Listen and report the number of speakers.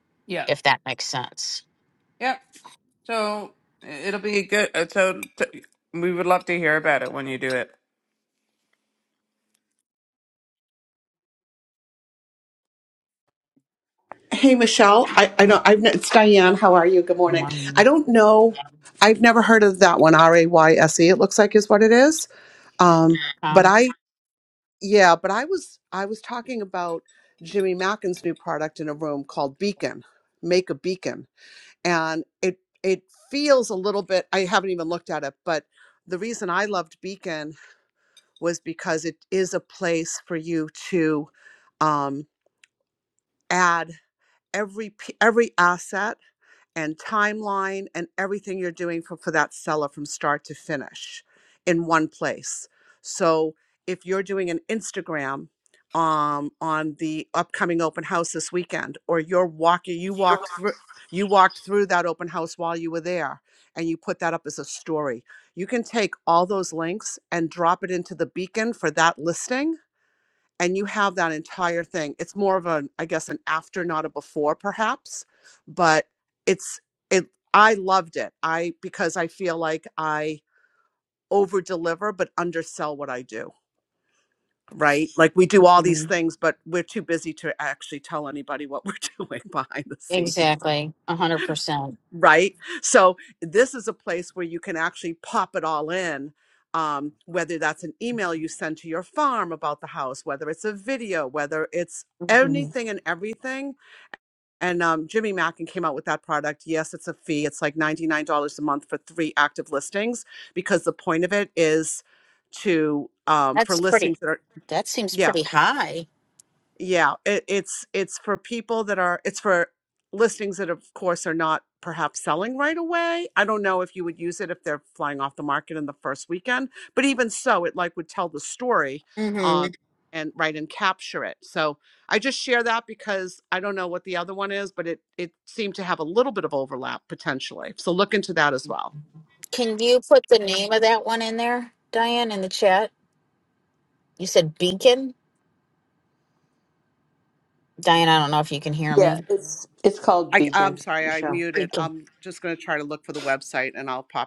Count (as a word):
four